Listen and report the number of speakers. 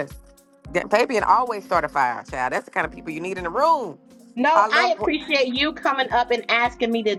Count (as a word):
two